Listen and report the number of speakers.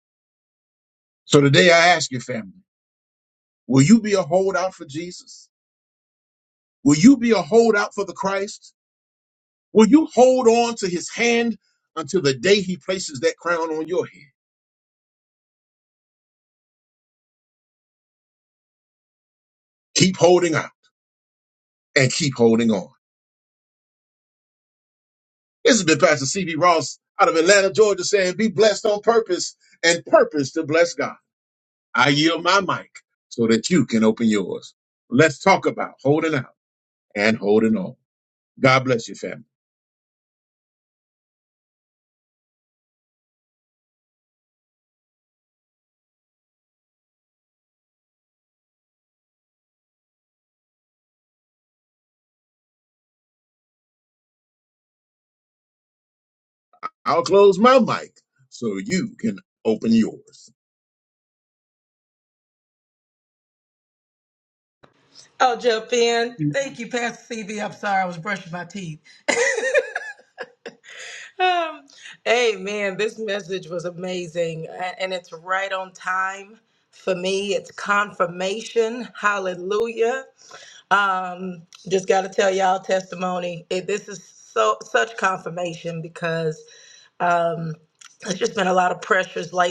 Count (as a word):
two